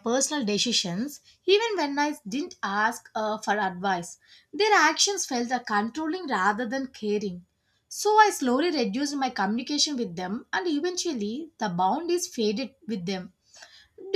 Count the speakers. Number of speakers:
one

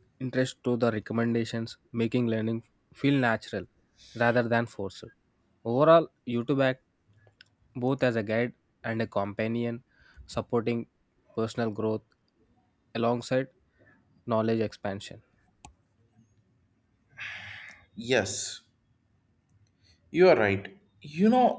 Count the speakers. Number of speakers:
two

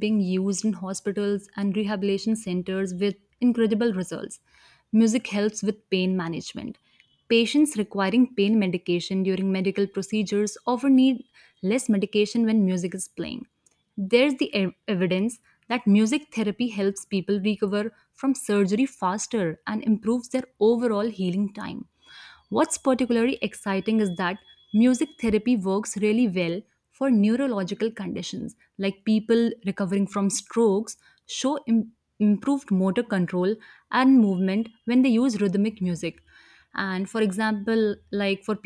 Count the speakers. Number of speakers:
one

